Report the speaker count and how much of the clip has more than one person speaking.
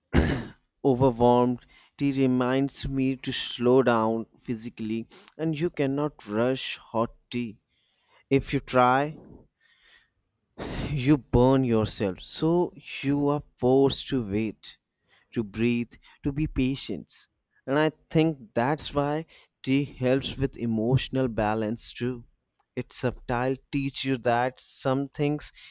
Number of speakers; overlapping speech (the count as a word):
one, no overlap